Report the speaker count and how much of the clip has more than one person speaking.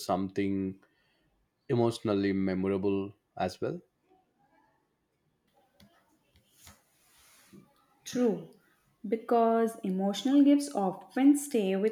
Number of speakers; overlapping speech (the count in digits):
2, no overlap